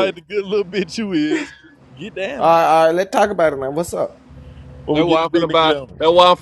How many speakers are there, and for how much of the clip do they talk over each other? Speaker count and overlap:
three, about 19%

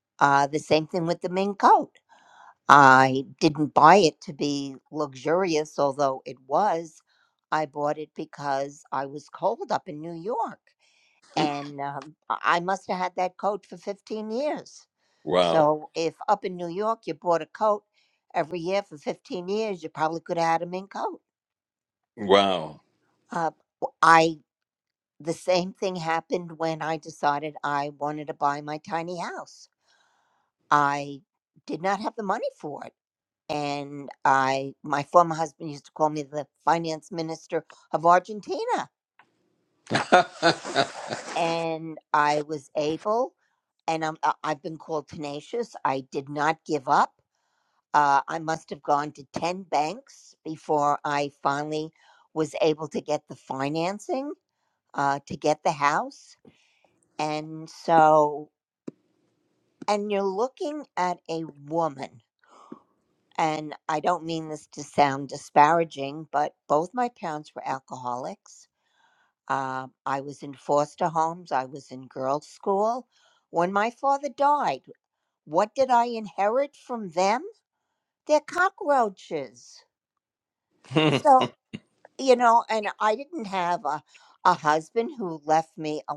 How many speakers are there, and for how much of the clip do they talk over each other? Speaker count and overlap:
two, under 1%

